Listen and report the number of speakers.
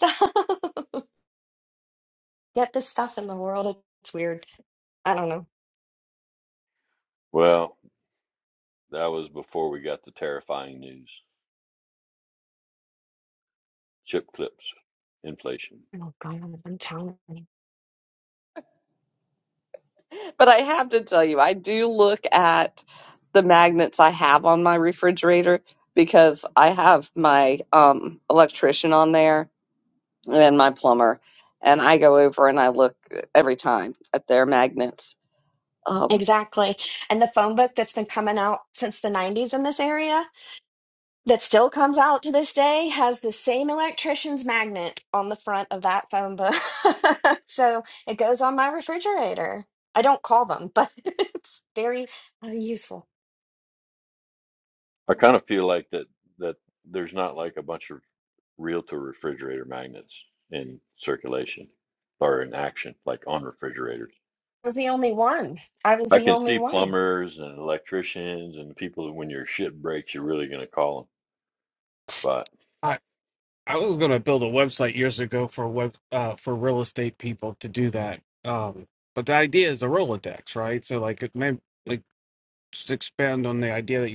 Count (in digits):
4